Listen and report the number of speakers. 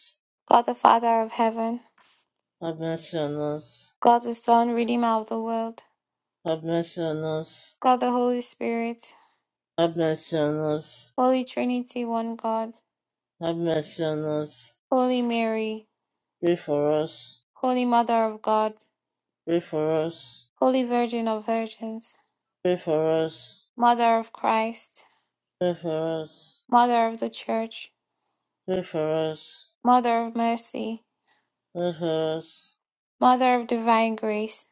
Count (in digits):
2